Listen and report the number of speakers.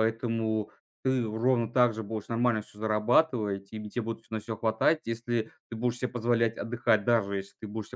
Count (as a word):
one